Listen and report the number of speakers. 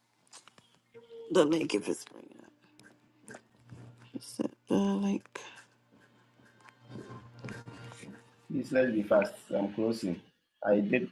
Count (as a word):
two